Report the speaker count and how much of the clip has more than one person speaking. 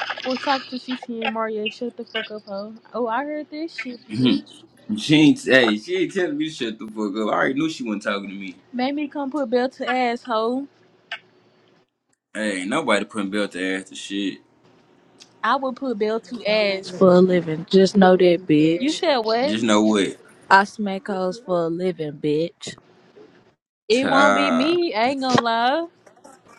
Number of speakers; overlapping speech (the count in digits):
3, about 5%